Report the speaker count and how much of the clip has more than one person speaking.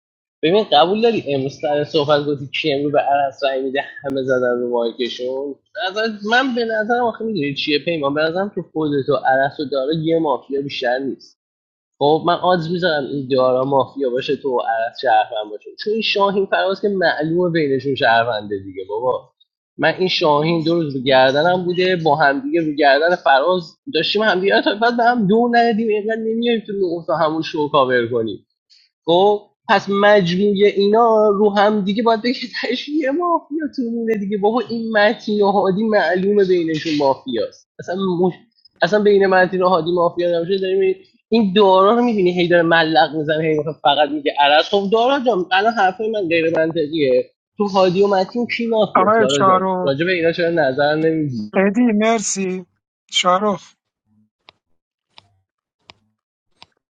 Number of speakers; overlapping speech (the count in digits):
2, about 2%